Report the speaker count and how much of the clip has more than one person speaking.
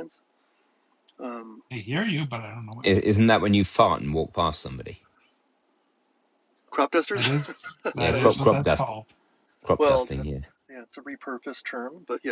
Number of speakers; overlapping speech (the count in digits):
3, about 15%